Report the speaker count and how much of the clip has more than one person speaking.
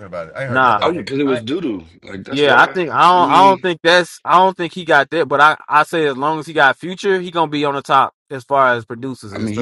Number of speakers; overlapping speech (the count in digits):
3, about 27%